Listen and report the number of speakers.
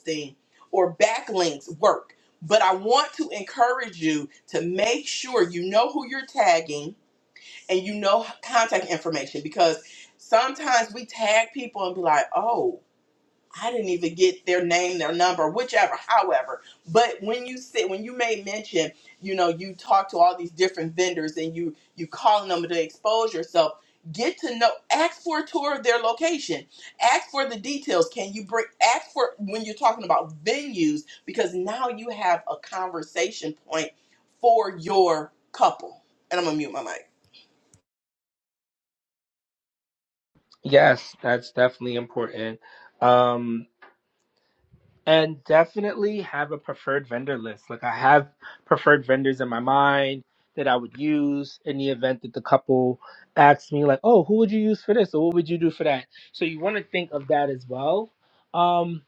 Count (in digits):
2